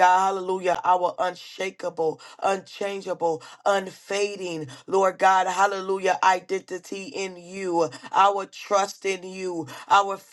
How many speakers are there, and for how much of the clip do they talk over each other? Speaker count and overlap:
1, no overlap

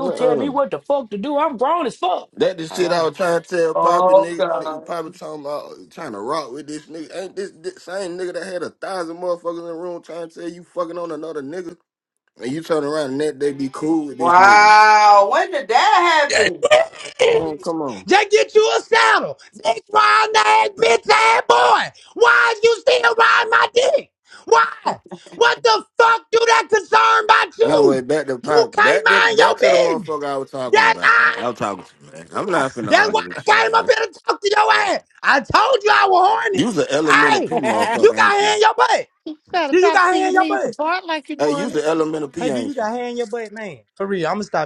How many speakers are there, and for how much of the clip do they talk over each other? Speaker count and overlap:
5, about 22%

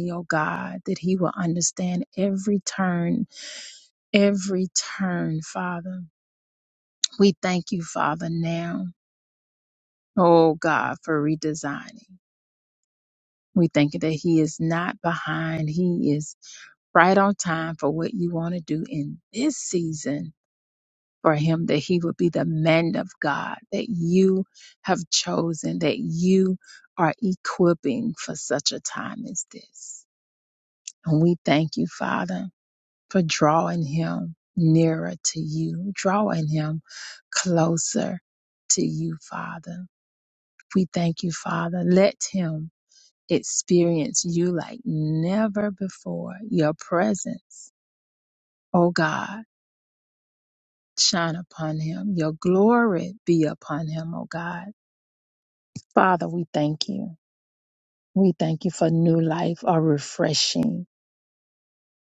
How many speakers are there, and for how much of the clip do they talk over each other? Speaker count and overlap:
1, no overlap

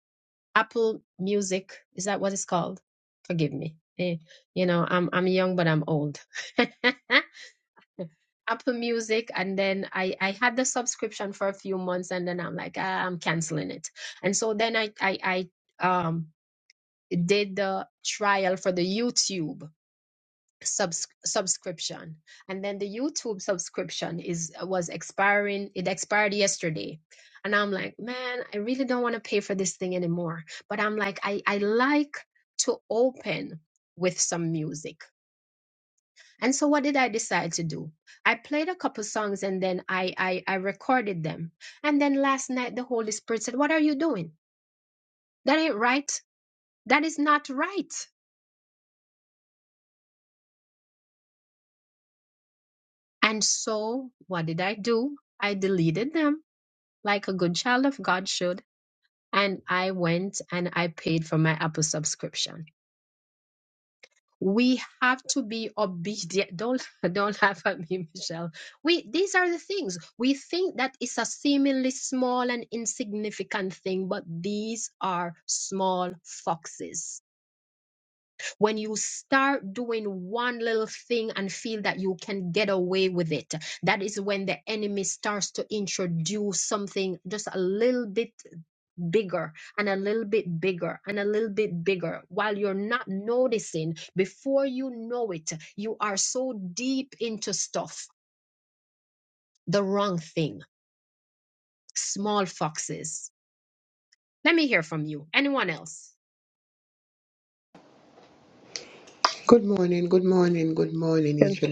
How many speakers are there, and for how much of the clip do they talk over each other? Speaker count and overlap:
2, under 1%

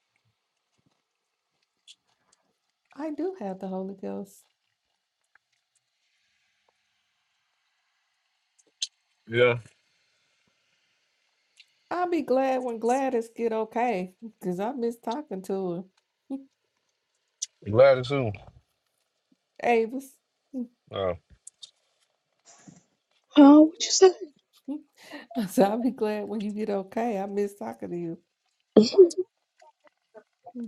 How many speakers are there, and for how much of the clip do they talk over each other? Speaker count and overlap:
3, no overlap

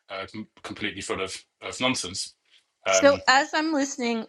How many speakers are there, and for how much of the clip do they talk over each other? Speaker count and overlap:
2, about 4%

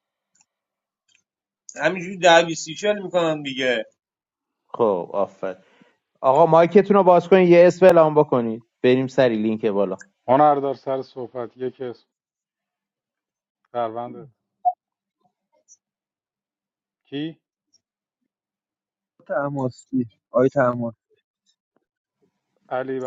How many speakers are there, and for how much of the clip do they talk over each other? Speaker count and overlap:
4, no overlap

